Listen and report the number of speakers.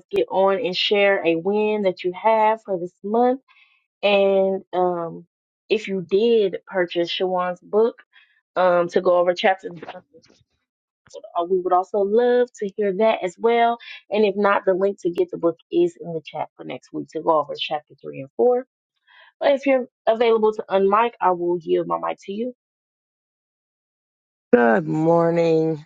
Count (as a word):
two